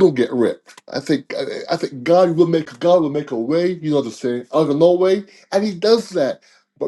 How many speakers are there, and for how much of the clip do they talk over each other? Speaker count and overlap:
one, no overlap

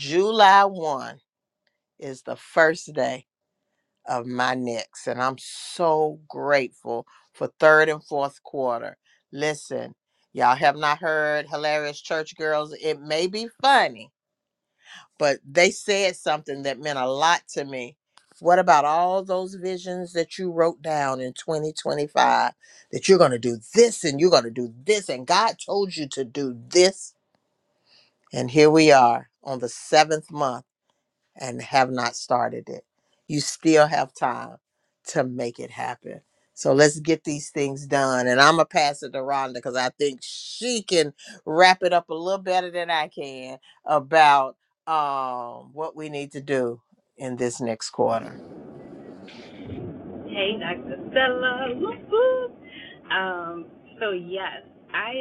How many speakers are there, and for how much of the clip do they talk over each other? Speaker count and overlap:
two, no overlap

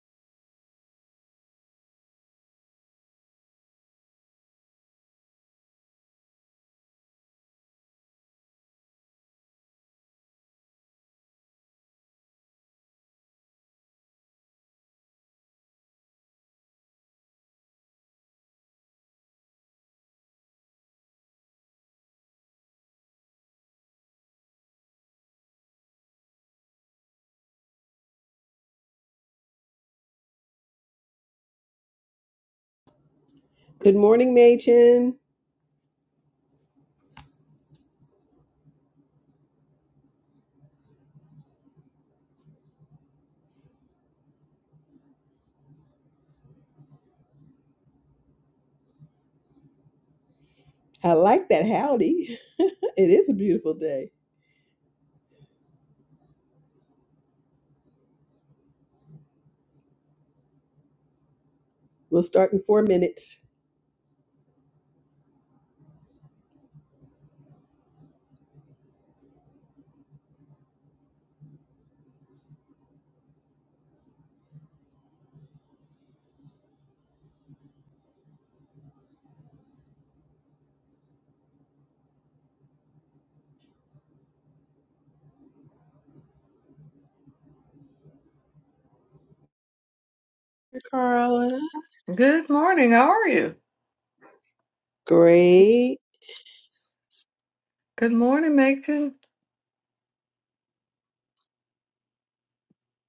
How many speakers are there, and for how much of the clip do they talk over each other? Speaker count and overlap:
two, no overlap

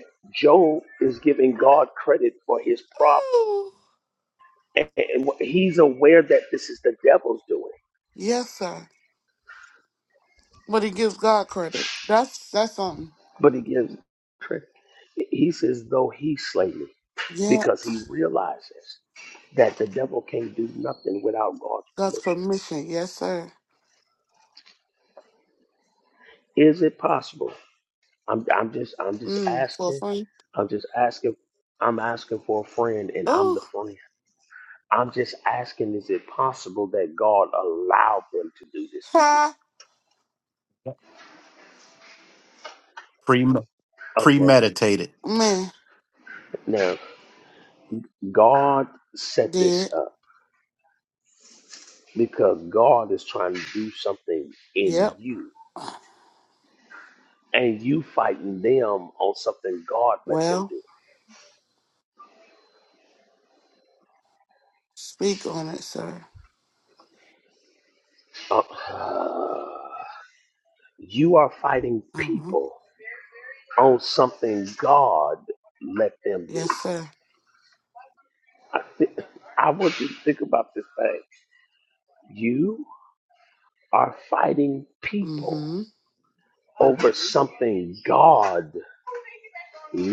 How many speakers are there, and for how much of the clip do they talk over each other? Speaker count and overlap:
three, about 5%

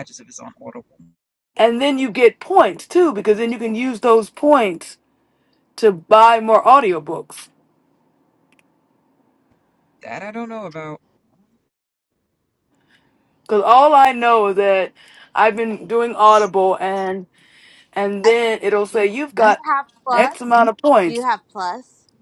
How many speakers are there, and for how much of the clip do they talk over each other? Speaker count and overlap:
three, about 4%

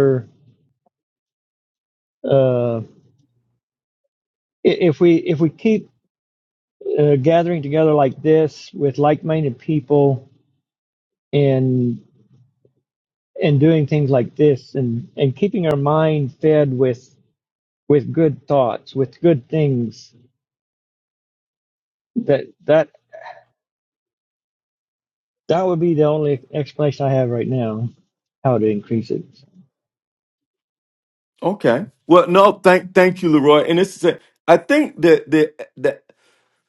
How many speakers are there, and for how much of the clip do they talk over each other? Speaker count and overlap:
two, no overlap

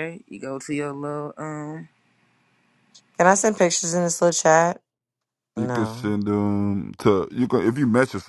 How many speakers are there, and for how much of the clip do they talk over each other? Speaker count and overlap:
three, about 5%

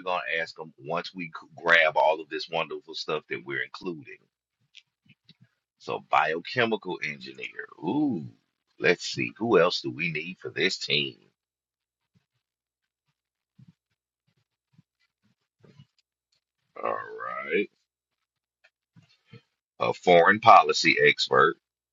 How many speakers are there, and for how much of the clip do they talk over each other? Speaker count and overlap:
one, no overlap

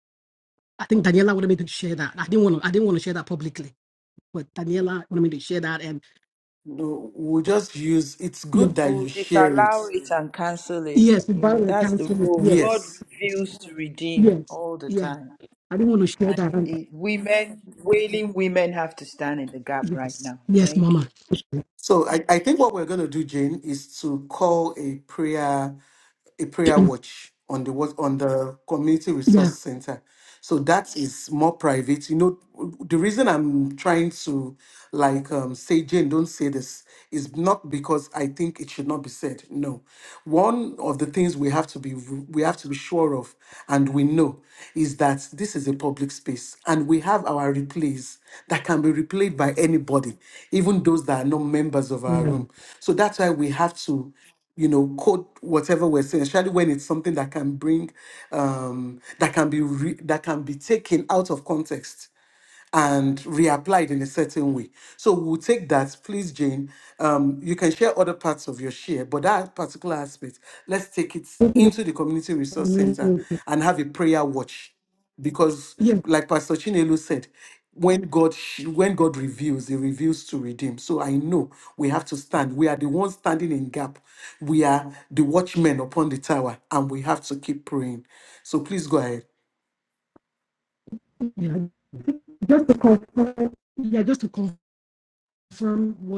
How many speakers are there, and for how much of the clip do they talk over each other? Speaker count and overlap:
three, about 6%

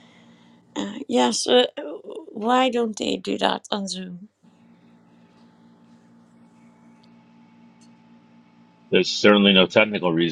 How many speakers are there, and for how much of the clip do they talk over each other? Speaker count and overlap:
two, no overlap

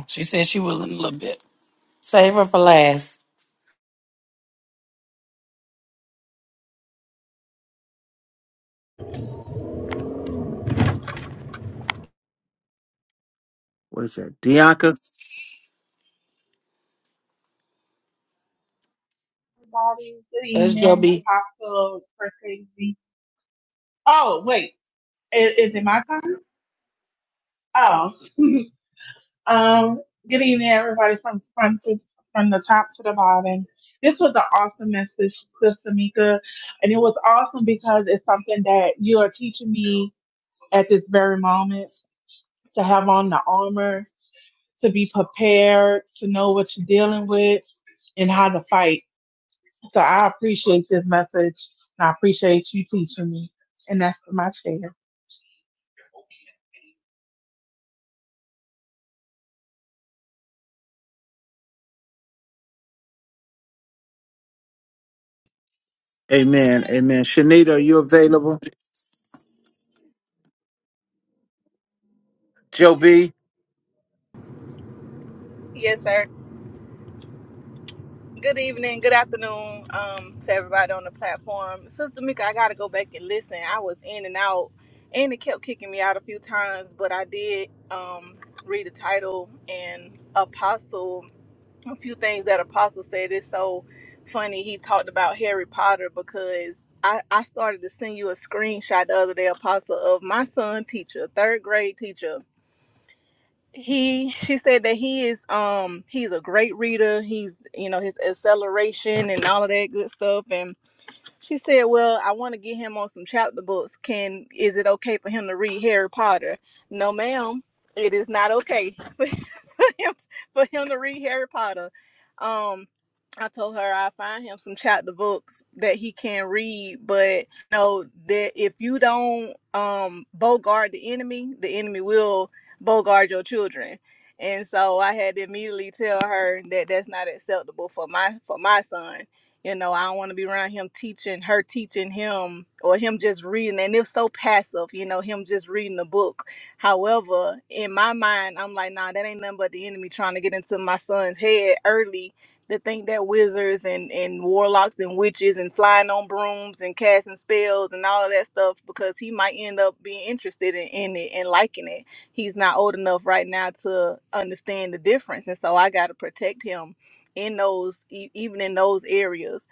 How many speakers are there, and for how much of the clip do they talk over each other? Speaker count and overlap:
four, under 1%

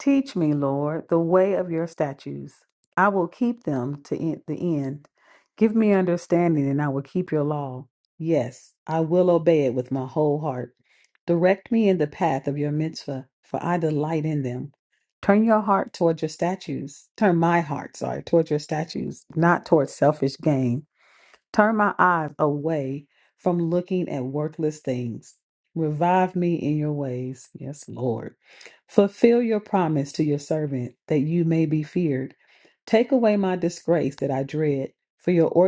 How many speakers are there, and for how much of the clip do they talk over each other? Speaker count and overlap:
one, no overlap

